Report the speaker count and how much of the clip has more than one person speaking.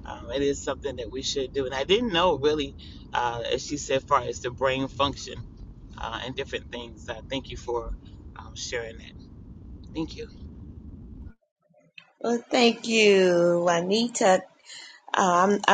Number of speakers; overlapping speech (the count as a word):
two, no overlap